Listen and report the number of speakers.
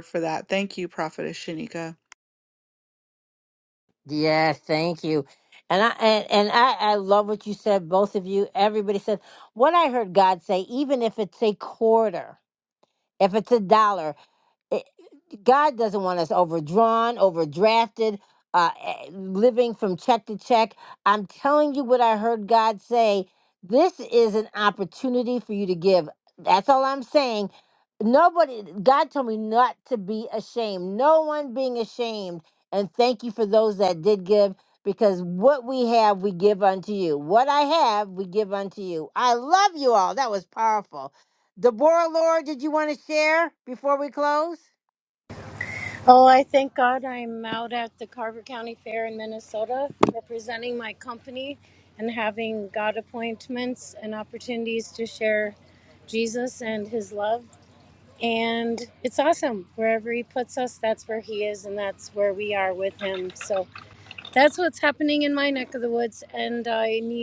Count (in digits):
3